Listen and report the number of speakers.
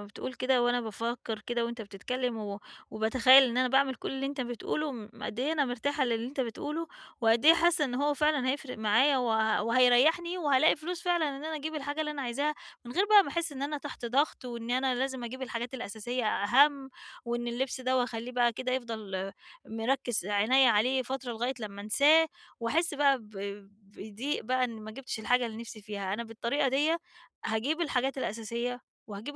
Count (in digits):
1